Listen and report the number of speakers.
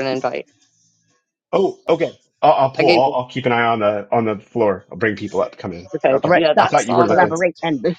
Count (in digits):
3